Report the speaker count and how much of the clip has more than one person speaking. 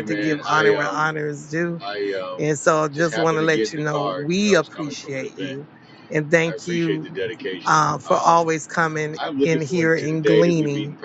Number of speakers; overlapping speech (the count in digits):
2, about 65%